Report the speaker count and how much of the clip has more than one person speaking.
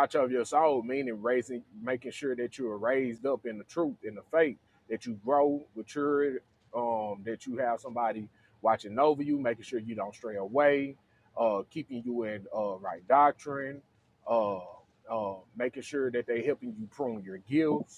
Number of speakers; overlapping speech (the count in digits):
1, no overlap